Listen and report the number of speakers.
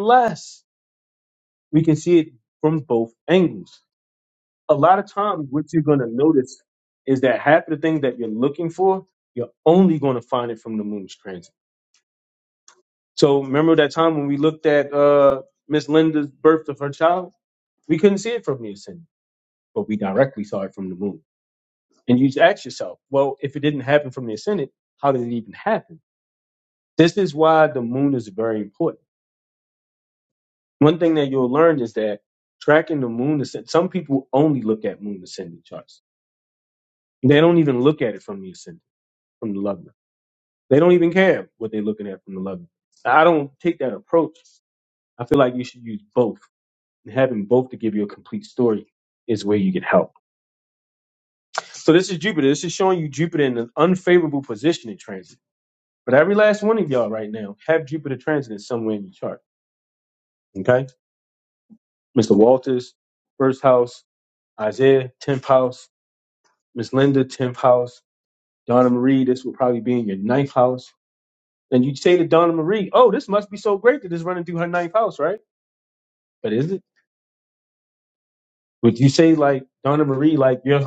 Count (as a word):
one